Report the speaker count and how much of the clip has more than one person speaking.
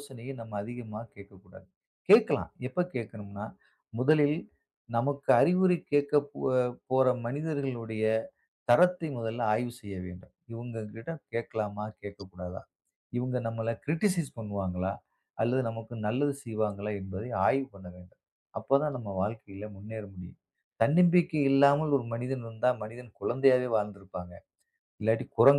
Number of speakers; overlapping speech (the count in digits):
1, no overlap